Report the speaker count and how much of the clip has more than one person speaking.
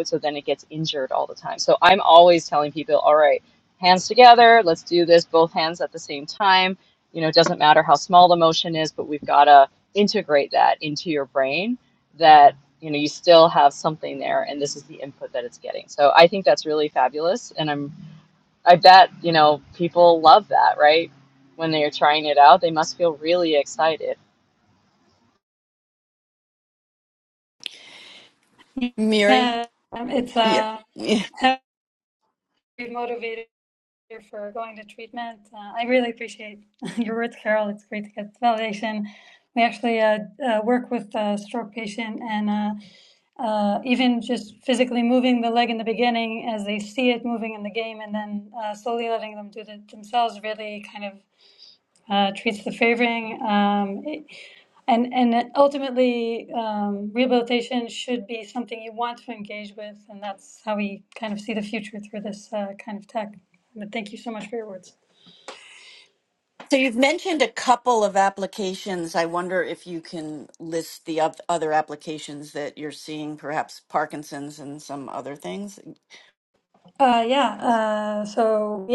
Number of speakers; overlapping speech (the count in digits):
3, about 1%